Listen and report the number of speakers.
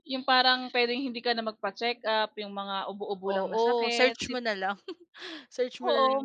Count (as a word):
two